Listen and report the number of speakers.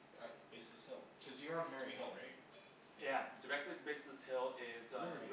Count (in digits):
2